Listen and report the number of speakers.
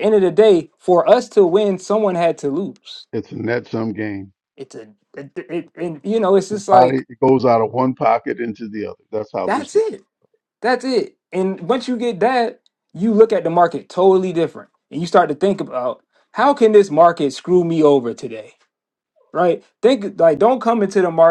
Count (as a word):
two